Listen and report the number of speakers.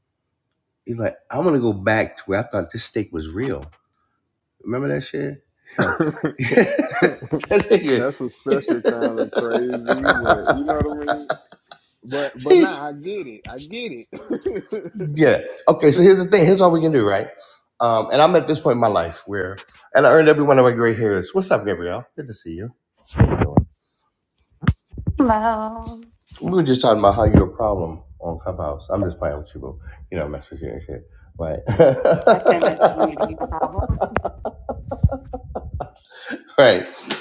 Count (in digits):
3